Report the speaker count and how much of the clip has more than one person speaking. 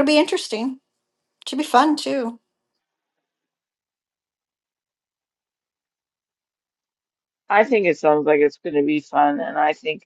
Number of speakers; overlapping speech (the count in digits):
2, no overlap